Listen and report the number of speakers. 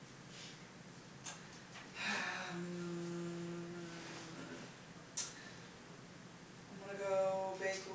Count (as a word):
one